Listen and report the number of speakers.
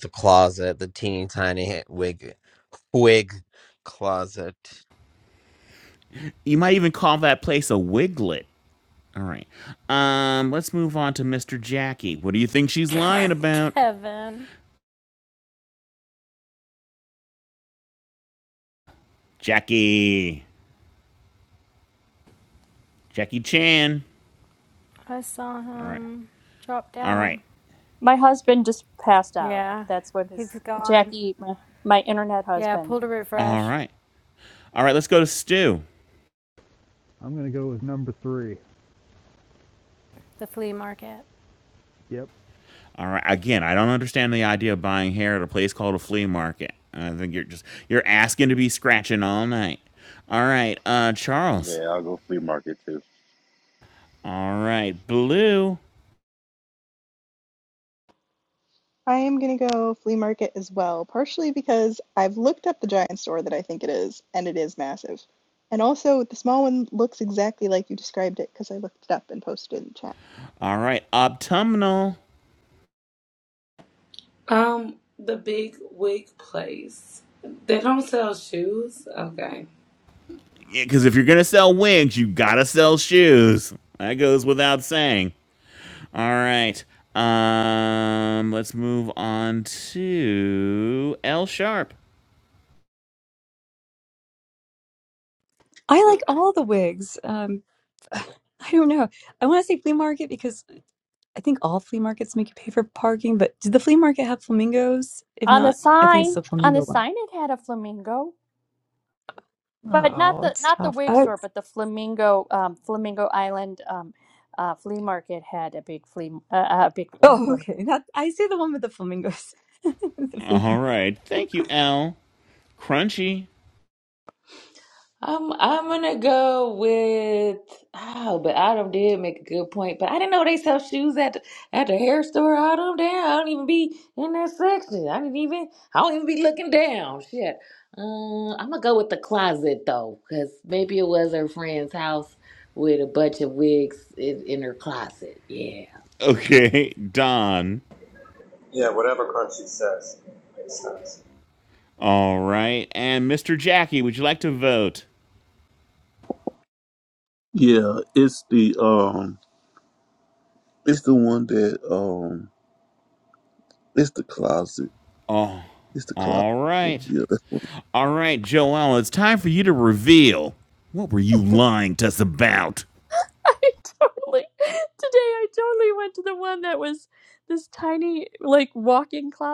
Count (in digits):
12